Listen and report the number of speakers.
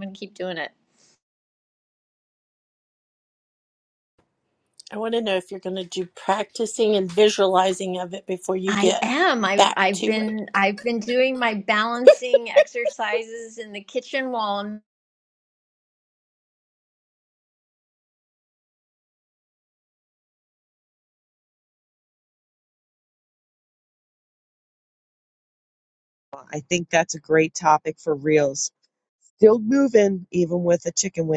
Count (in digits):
3